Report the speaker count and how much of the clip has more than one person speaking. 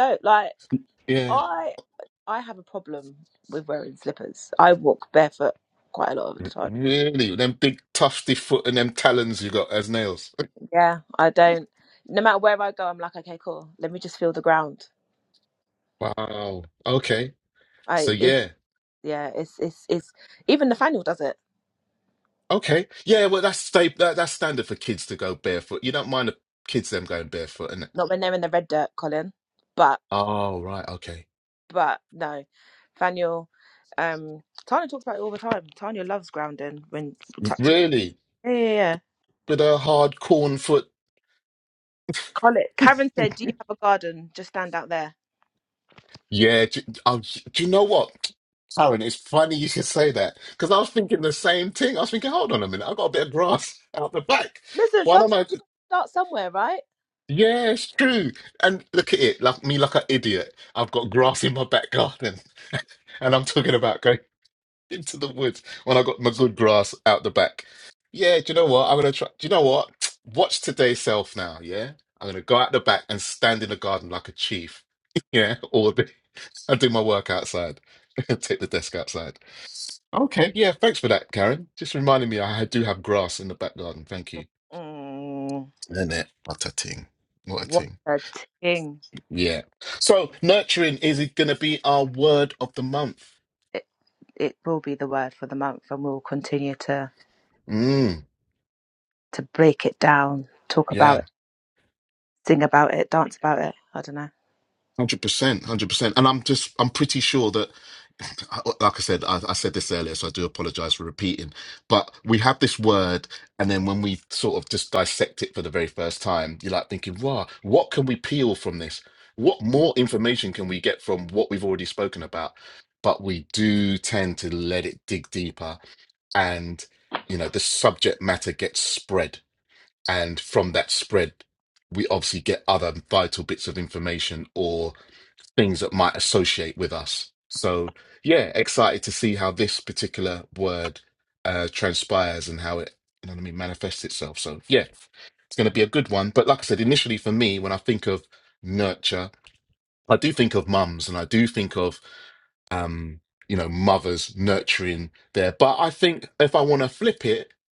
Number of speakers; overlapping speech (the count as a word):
two, about 1%